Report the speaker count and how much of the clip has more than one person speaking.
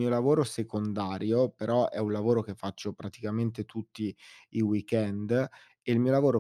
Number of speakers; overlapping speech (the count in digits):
1, no overlap